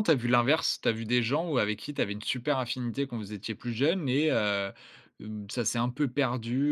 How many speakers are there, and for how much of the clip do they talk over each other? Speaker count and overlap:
1, no overlap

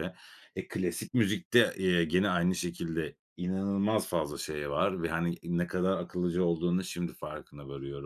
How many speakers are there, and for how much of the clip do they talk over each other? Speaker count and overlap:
1, no overlap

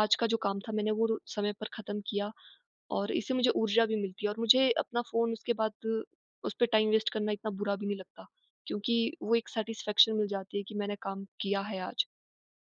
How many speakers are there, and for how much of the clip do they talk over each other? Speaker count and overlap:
1, no overlap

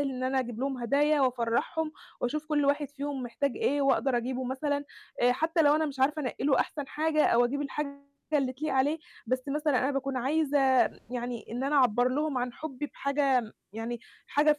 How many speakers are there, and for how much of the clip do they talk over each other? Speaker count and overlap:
1, no overlap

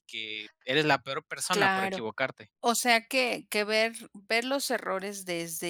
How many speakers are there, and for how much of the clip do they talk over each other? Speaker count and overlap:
2, about 8%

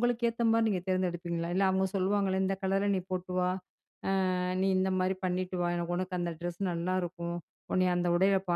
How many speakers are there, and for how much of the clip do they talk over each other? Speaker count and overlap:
1, no overlap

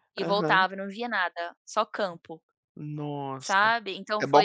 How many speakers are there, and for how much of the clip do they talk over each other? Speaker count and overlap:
2, about 22%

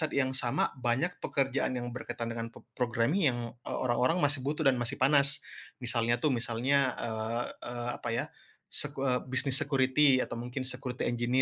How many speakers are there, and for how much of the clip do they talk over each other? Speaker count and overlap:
1, no overlap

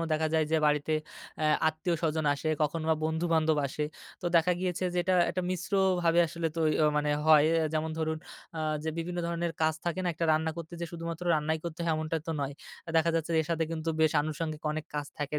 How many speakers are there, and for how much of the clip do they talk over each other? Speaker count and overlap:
1, no overlap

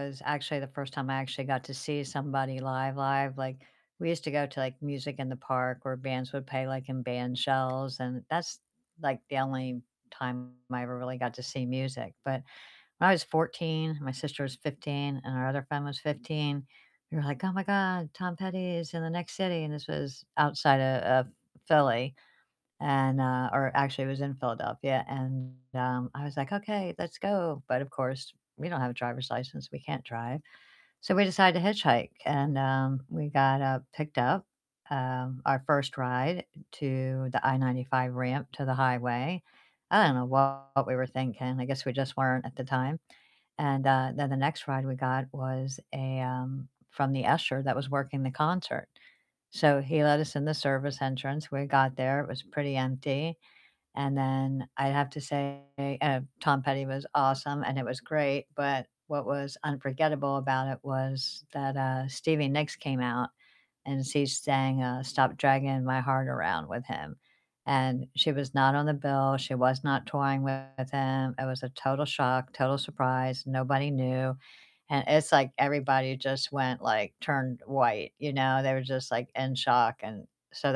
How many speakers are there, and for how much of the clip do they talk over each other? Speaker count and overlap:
1, no overlap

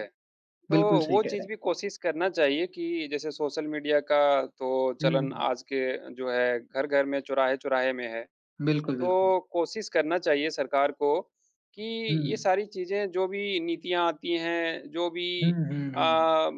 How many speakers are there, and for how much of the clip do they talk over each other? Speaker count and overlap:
2, about 11%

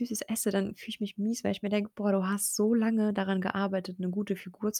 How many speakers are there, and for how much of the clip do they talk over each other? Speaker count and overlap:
1, no overlap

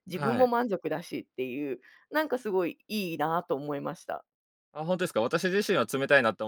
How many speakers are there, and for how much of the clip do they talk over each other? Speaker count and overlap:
2, about 5%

